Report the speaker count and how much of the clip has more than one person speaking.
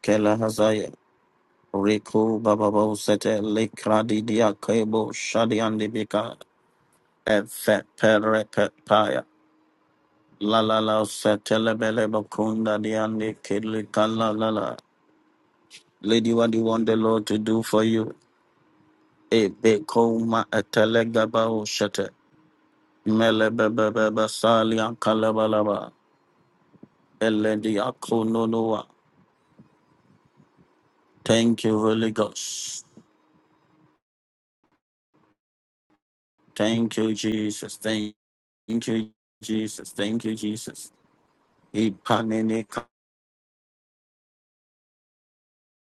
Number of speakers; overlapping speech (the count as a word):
one, no overlap